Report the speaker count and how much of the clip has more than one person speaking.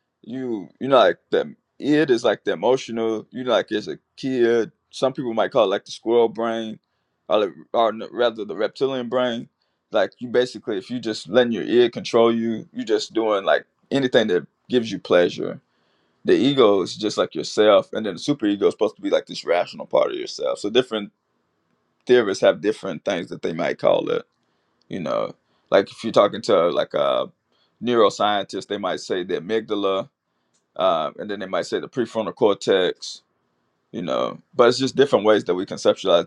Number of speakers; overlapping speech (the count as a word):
one, no overlap